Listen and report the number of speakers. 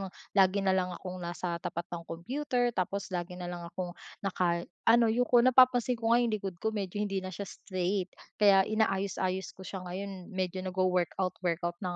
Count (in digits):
1